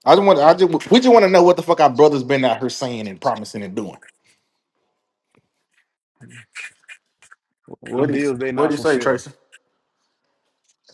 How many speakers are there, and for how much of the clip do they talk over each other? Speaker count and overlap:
2, about 8%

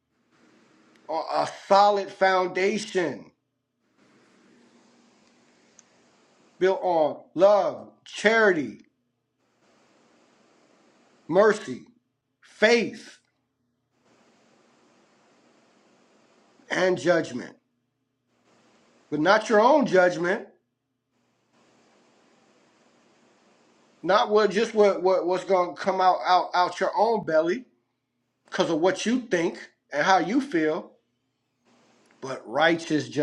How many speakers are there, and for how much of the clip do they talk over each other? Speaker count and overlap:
1, no overlap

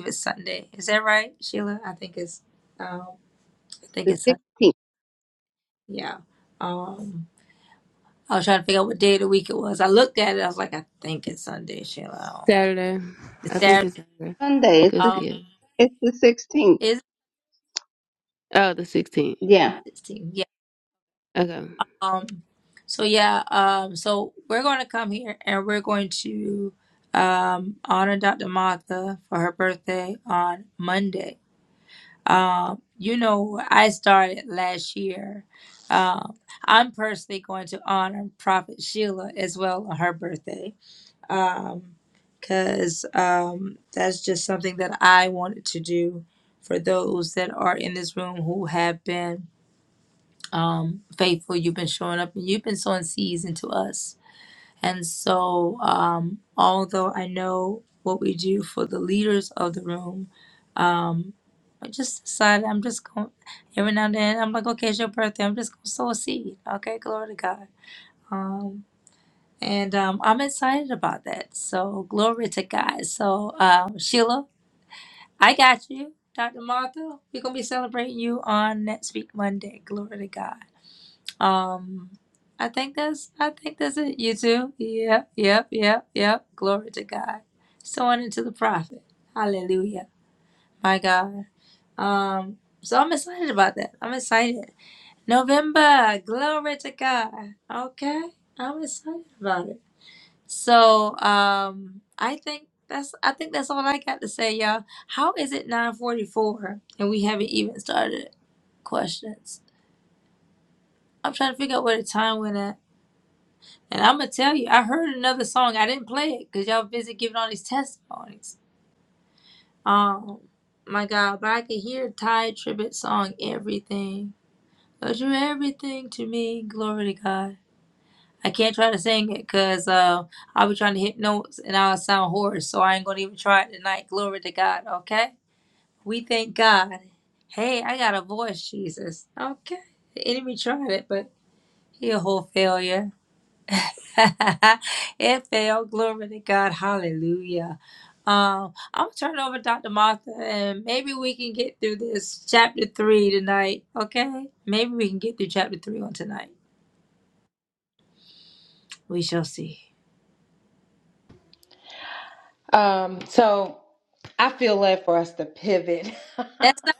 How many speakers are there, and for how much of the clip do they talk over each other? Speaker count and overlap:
4, about 1%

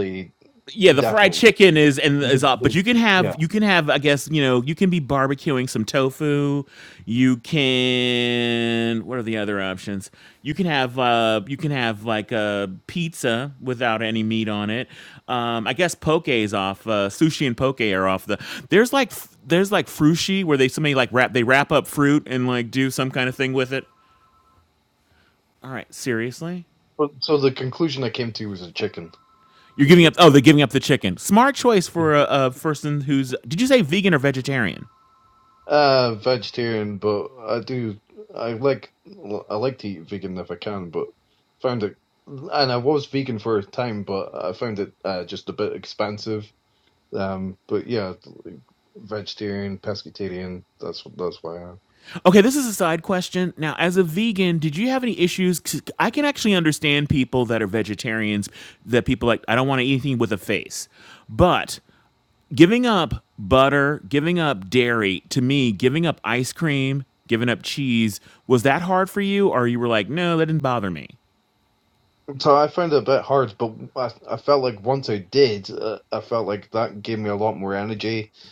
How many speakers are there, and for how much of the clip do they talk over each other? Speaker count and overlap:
2, about 1%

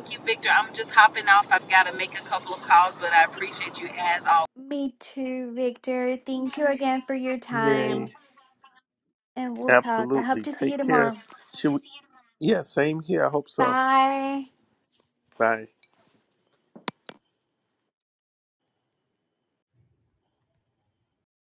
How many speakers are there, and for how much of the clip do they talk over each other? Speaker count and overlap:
3, about 10%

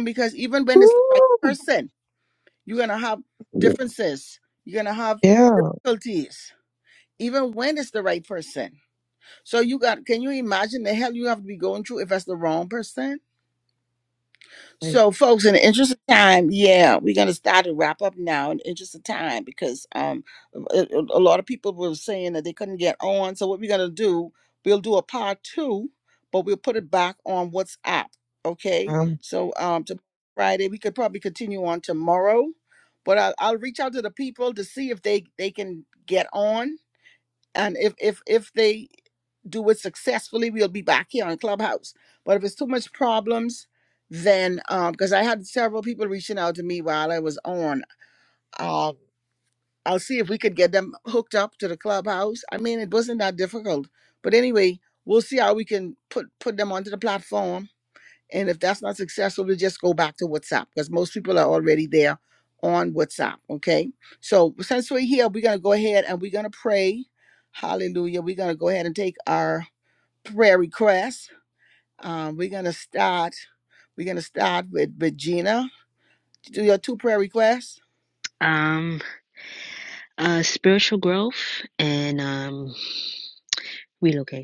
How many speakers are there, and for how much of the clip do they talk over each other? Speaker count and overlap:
3, about 1%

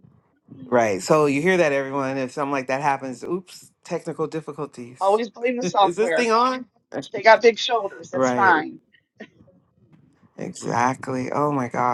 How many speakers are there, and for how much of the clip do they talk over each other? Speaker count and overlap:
2, about 8%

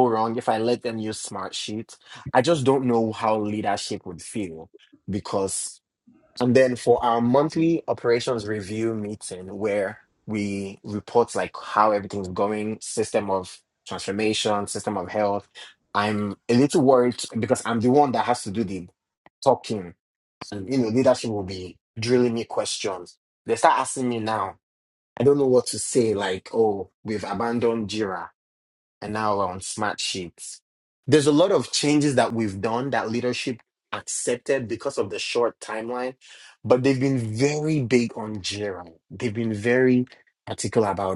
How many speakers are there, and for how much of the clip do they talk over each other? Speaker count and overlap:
1, no overlap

